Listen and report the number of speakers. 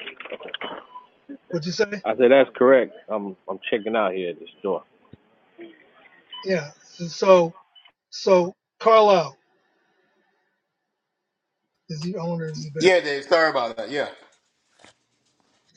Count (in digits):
3